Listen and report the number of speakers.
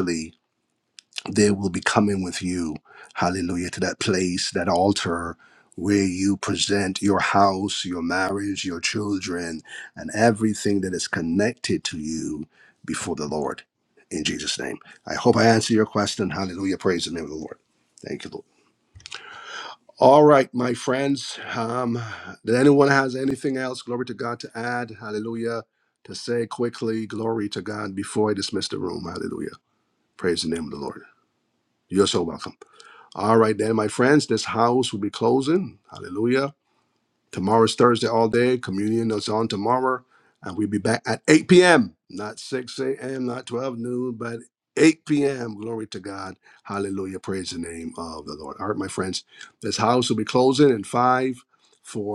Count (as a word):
one